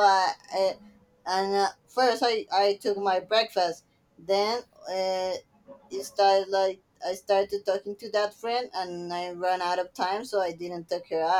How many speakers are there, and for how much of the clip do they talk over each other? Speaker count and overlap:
one, no overlap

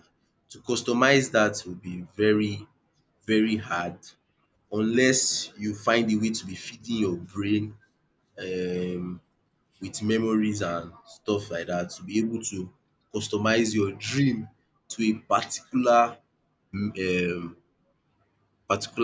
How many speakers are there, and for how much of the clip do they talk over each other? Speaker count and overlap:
one, no overlap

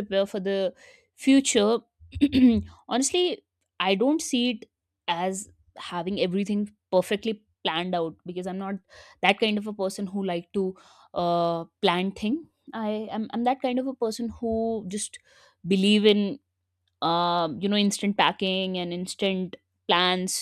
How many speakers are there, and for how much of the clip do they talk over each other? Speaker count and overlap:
one, no overlap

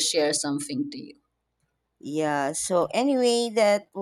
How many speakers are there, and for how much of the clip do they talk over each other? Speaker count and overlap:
two, no overlap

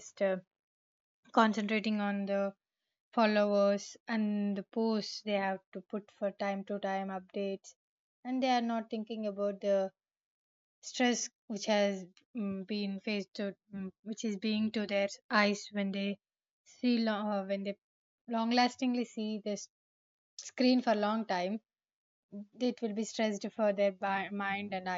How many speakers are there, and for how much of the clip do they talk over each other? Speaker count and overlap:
one, no overlap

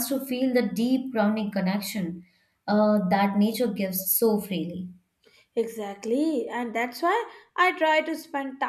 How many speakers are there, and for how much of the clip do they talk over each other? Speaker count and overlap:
two, no overlap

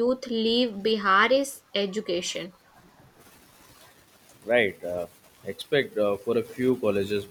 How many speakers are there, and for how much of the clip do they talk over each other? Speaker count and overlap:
two, no overlap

